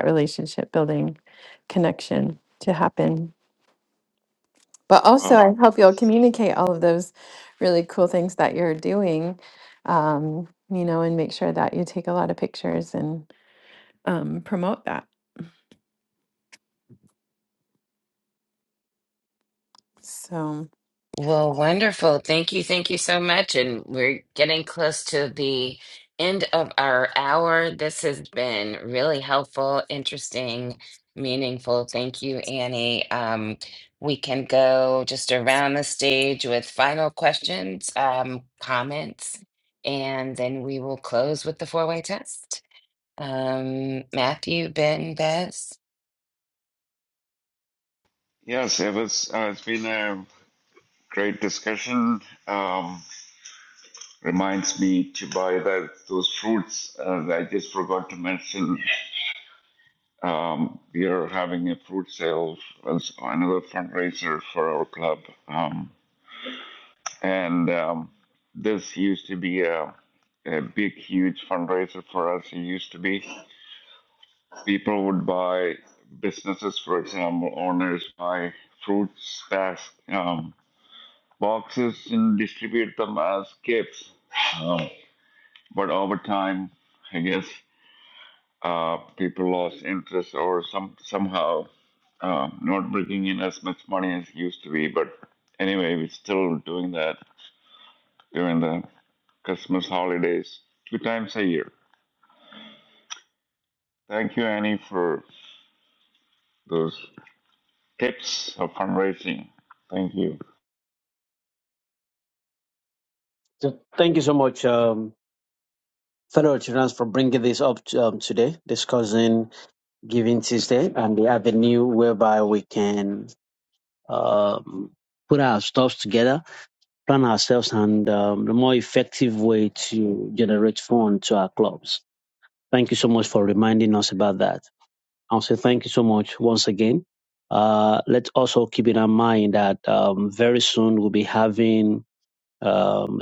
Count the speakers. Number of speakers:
4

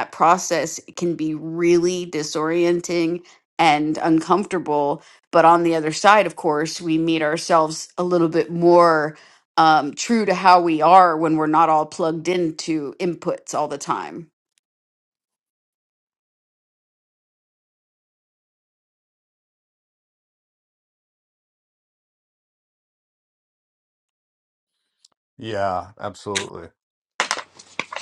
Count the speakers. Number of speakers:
2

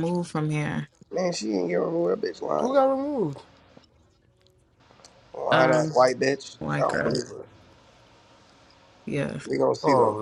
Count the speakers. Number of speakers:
3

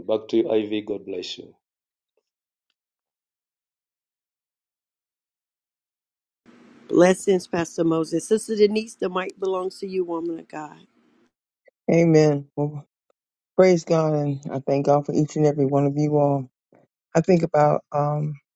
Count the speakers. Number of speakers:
3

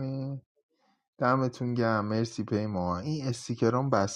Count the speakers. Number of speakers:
1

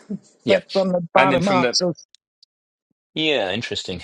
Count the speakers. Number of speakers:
2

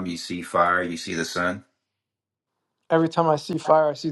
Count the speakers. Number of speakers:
2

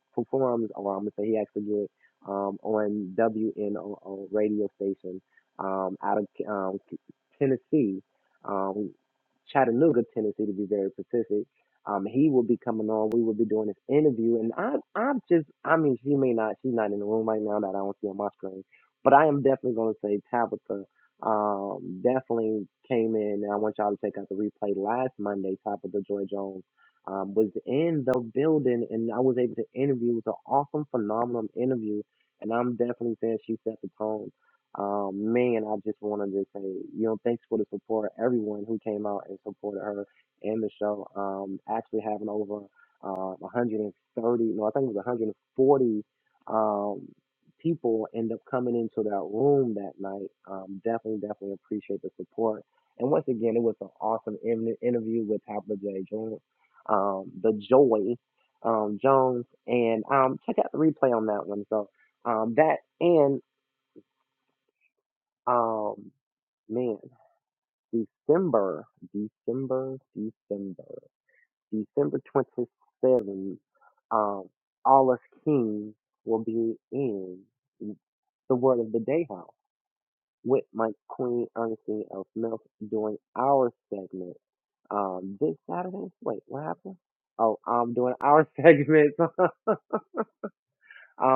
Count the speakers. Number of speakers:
1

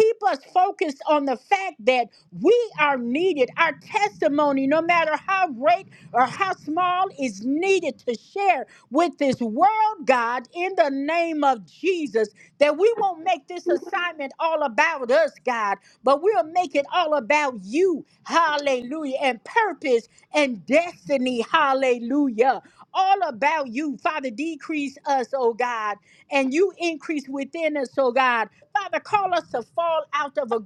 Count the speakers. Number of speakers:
1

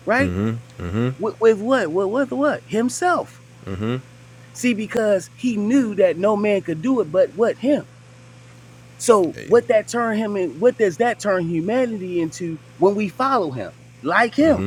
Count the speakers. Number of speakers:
2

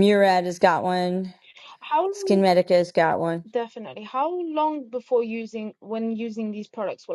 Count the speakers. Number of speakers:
2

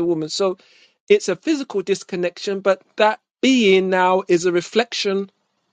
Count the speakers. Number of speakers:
1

